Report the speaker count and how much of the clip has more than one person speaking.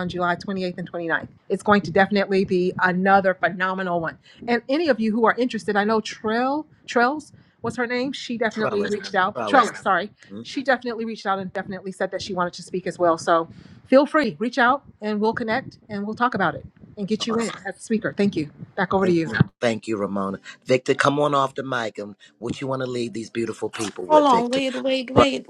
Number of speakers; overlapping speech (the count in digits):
3, about 7%